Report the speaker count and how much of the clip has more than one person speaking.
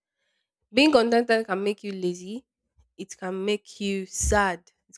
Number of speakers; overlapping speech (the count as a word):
one, no overlap